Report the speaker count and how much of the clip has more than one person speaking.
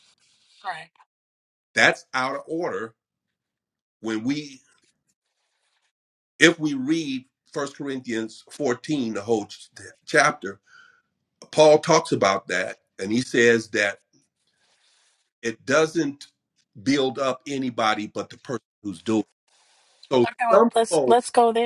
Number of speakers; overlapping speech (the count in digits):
2, about 4%